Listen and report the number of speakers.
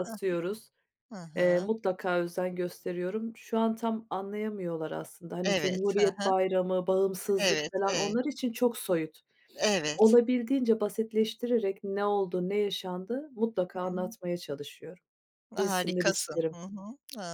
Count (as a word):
two